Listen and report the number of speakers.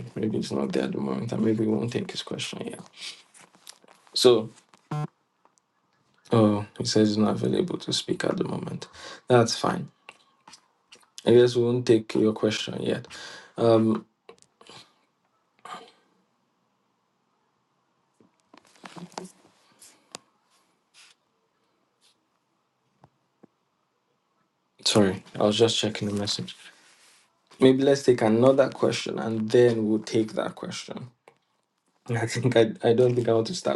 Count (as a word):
one